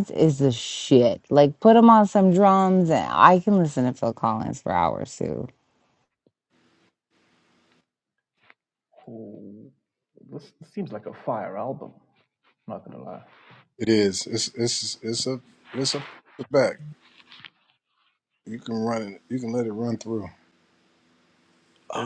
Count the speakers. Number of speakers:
3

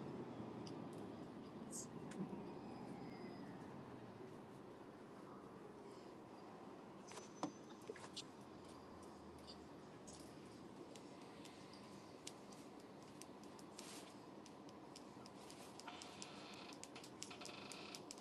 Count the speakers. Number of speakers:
0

